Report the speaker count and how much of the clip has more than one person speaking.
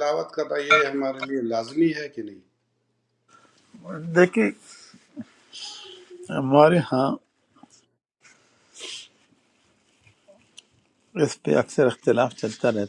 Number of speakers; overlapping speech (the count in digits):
2, no overlap